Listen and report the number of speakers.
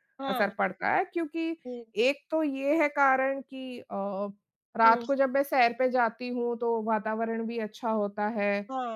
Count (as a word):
two